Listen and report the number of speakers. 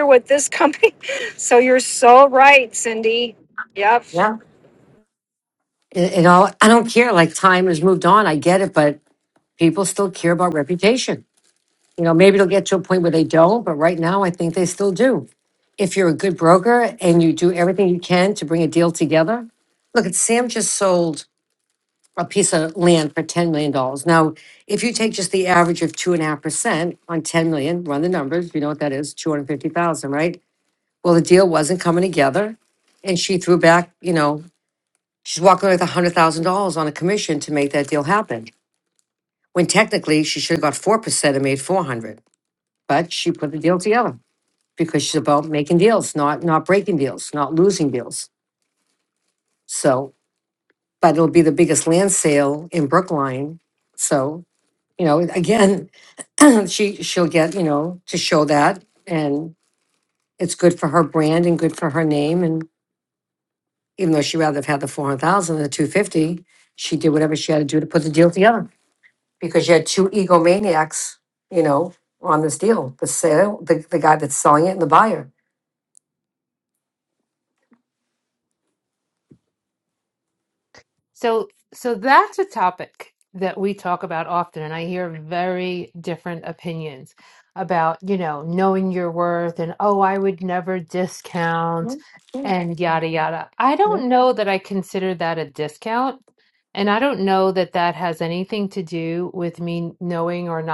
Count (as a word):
three